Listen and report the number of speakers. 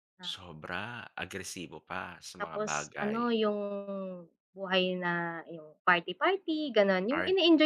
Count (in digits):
2